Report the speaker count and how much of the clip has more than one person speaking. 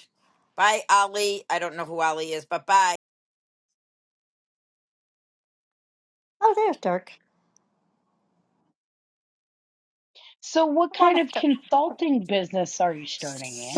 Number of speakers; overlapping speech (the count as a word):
three, about 4%